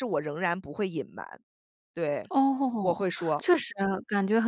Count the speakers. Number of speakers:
2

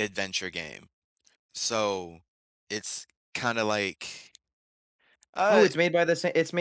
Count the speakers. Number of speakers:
2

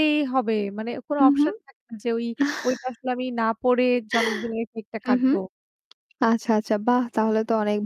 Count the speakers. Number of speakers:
2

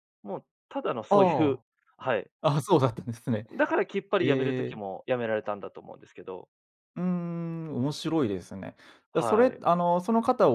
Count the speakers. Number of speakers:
2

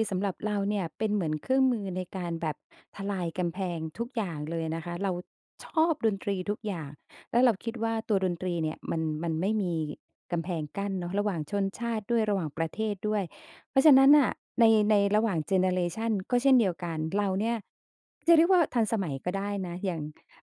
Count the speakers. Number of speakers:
1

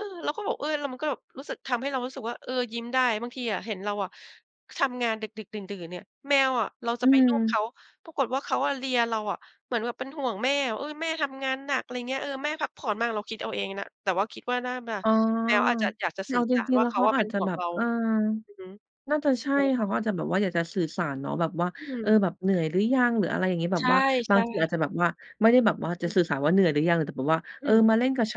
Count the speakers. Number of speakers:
2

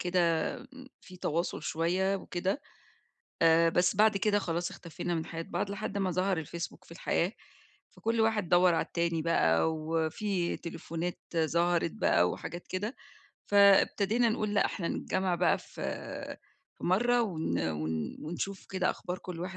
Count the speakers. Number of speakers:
1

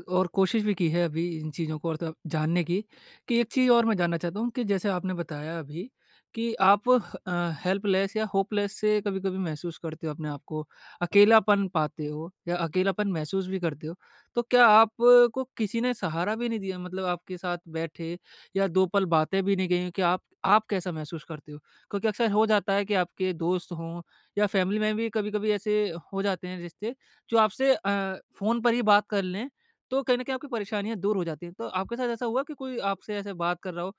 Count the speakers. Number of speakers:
1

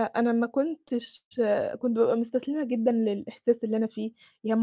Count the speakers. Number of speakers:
1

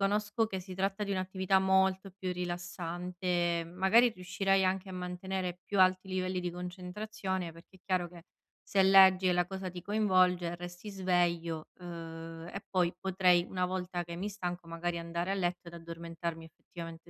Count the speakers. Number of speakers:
1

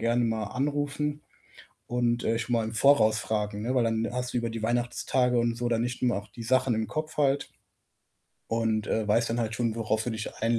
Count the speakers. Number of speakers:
1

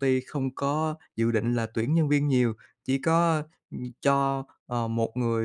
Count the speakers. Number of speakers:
1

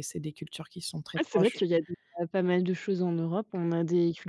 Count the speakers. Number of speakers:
2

